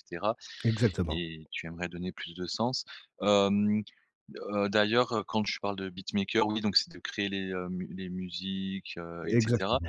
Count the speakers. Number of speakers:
two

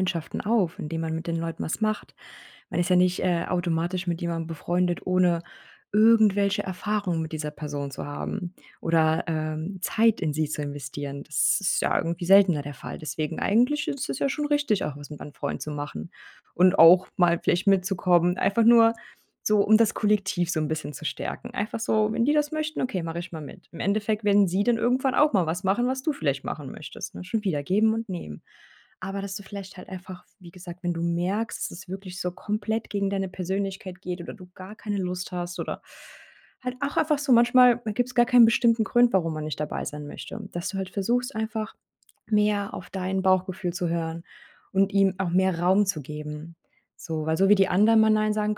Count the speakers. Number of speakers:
one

